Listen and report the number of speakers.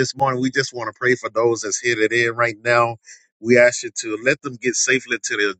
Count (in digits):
1